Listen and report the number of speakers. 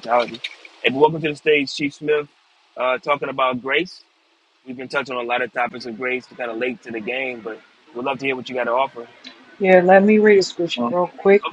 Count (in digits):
2